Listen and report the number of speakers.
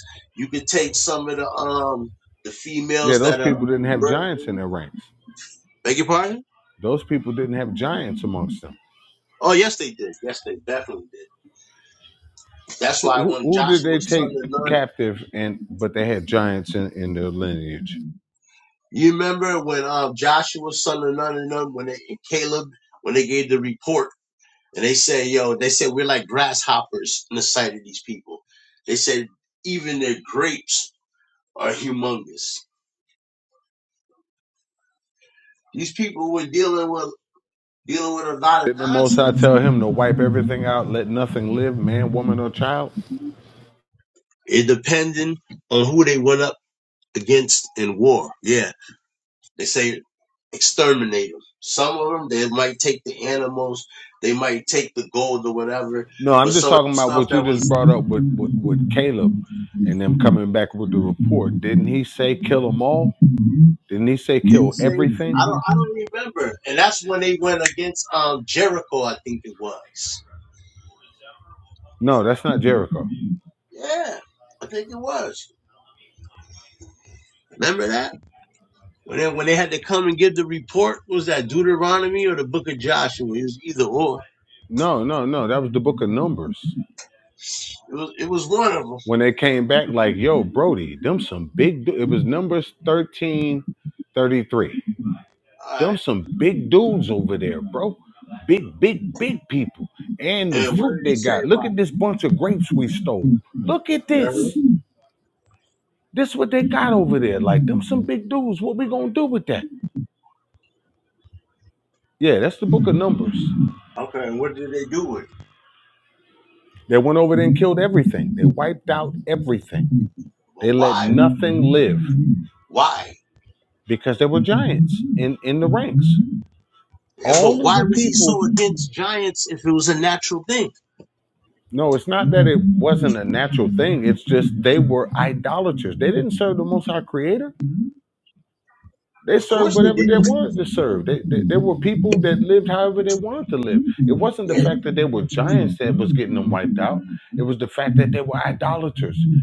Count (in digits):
2